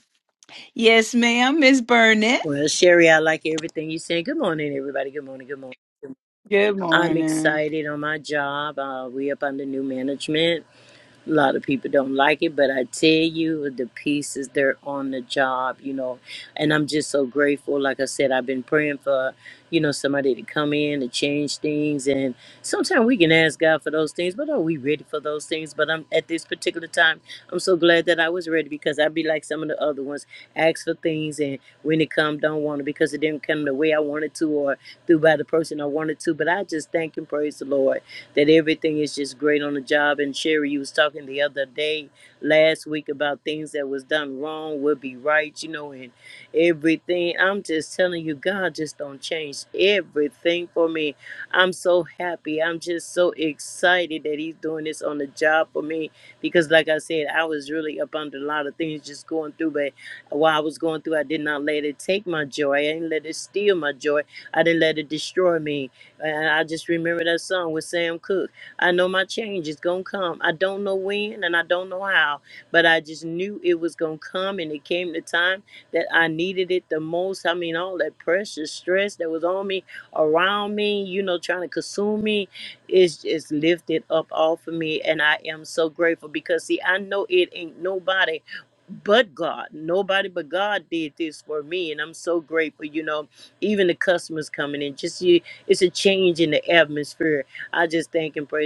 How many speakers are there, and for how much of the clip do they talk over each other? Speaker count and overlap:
2, about 1%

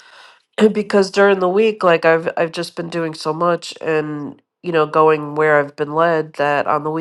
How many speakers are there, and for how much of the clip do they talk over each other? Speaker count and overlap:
1, no overlap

